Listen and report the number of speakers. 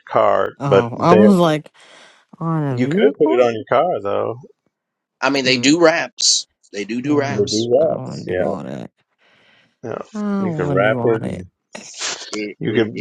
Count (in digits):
3